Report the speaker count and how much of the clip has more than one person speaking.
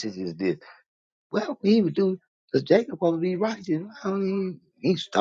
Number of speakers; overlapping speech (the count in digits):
1, no overlap